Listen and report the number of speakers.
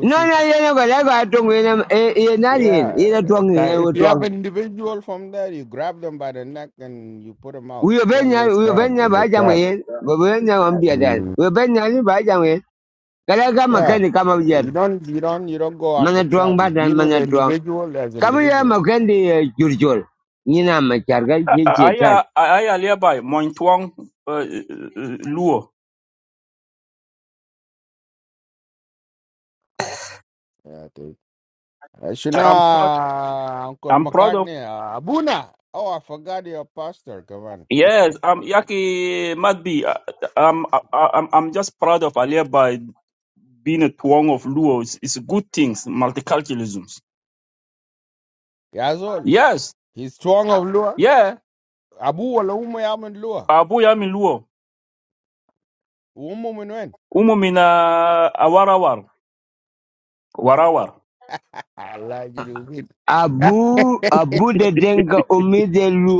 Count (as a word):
three